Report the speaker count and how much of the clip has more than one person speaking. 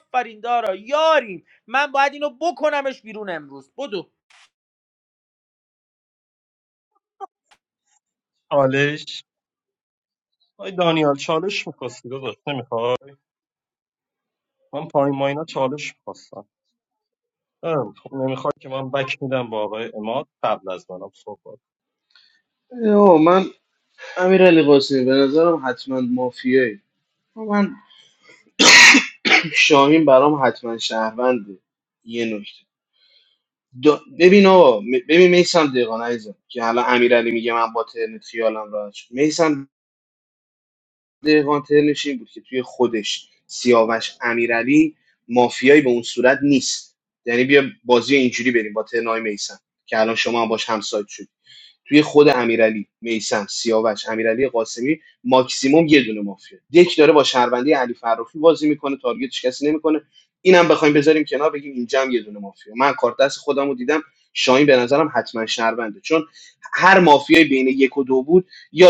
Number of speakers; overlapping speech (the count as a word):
three, no overlap